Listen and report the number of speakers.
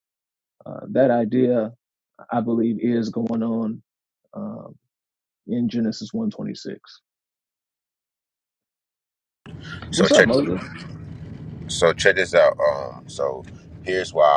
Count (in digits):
2